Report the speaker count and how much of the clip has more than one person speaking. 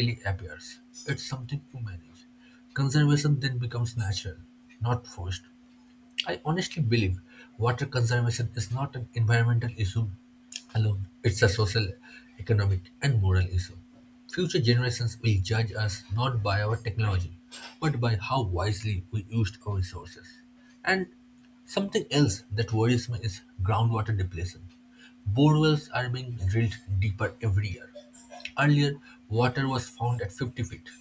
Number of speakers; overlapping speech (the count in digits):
1, no overlap